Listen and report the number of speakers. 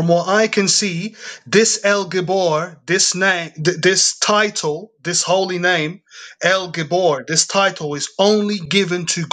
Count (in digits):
1